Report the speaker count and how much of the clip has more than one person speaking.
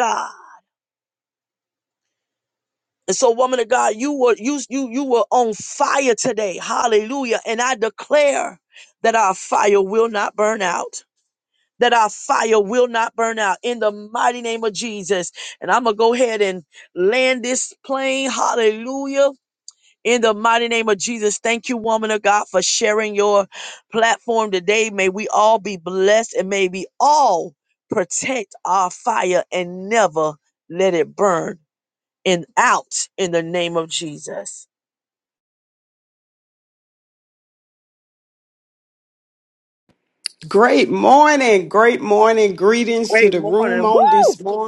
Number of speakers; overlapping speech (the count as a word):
two, about 3%